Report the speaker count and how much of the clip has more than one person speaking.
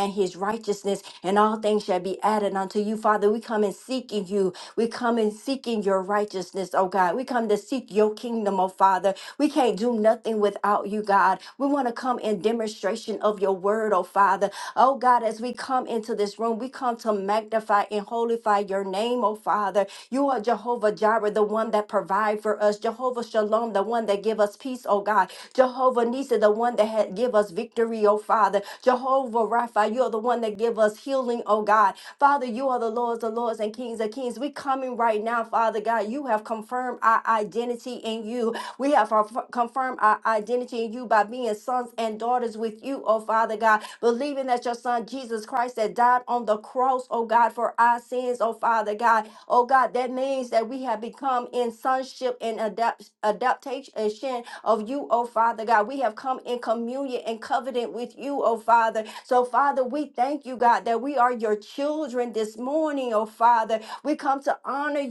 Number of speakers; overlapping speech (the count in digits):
1, no overlap